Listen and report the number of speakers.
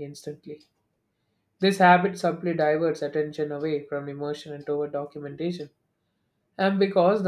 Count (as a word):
one